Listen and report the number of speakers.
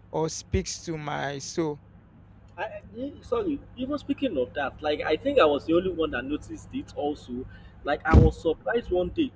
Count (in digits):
2